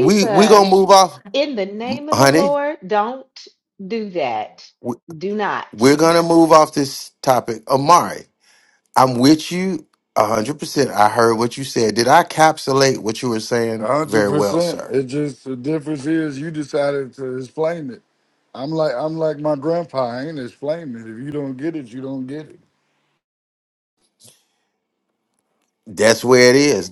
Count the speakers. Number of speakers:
3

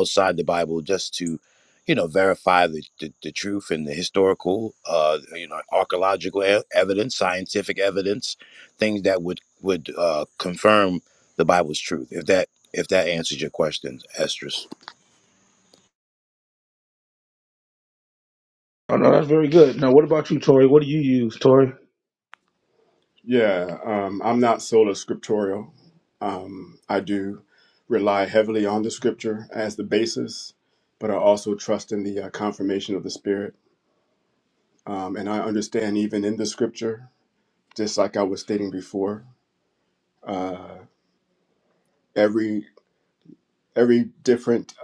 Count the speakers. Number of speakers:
3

